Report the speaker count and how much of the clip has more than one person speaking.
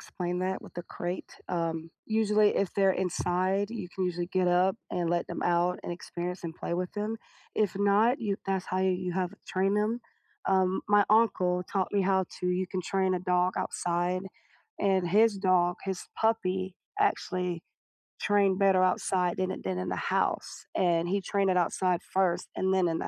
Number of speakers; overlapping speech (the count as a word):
one, no overlap